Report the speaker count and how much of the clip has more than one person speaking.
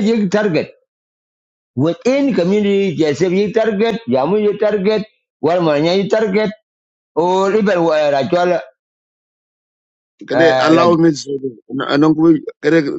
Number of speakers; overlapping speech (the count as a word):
two, about 5%